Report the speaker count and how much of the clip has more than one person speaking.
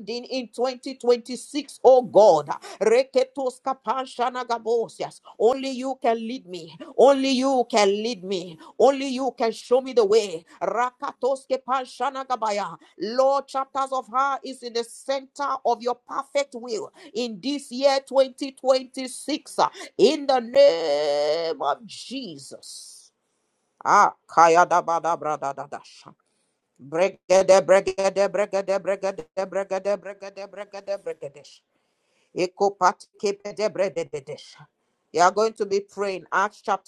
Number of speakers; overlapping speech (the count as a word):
one, no overlap